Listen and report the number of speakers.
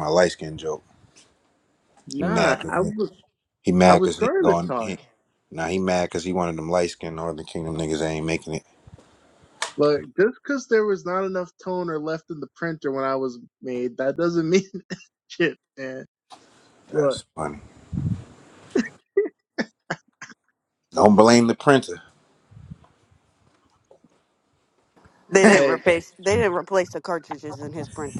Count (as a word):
three